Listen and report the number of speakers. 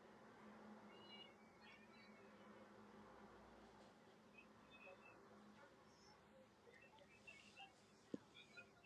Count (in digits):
0